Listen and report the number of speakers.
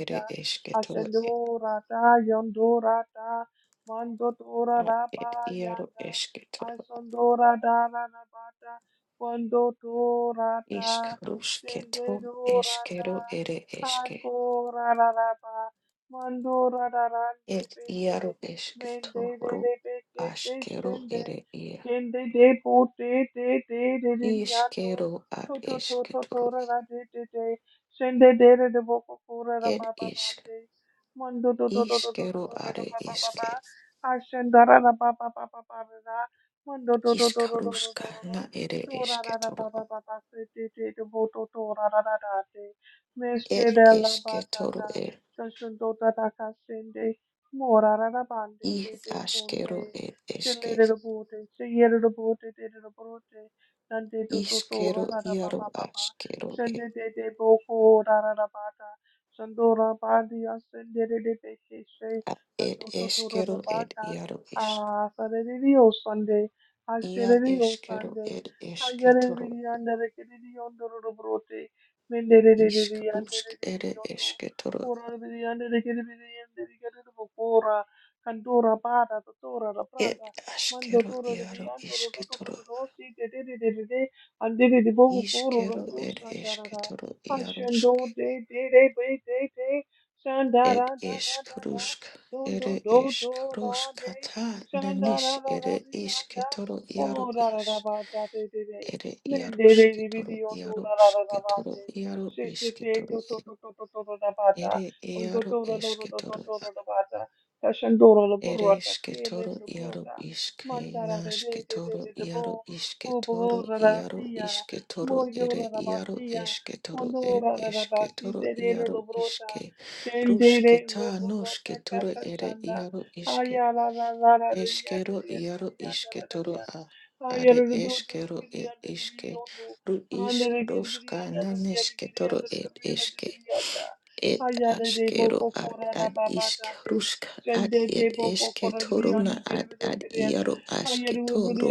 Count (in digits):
2